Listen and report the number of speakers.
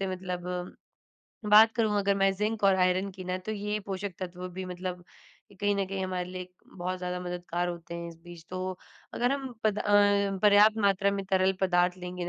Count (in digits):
1